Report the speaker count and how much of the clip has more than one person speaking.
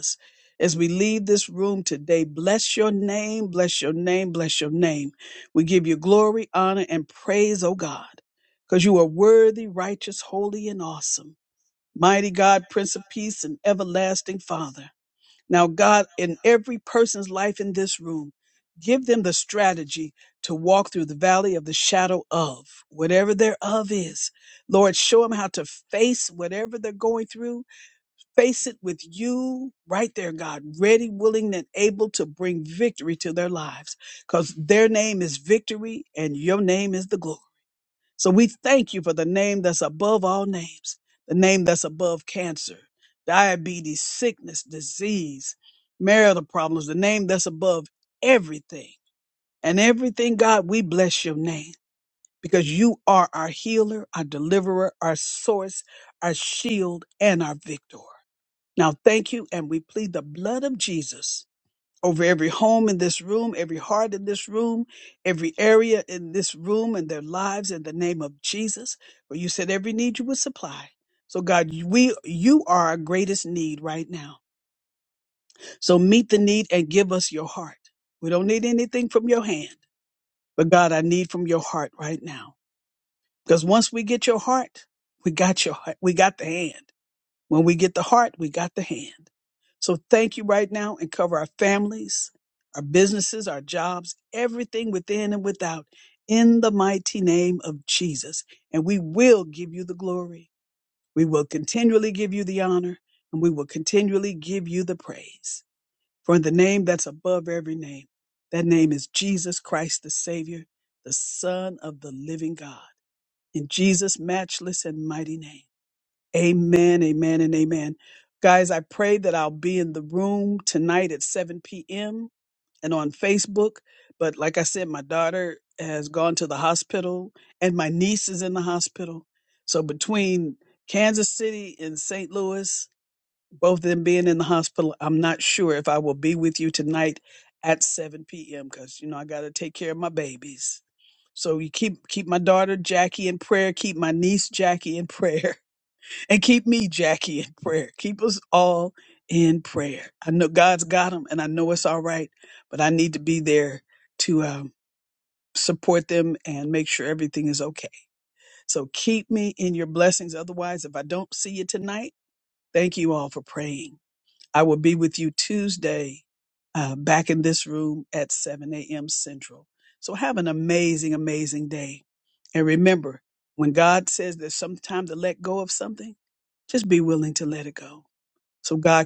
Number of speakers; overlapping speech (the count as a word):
one, no overlap